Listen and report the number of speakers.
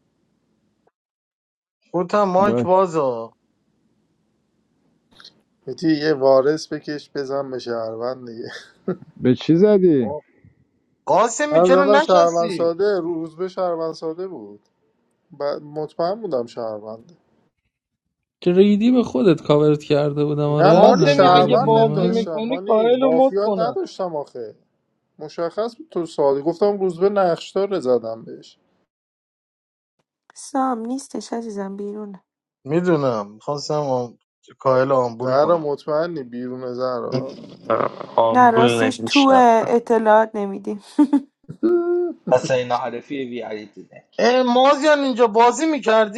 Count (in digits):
7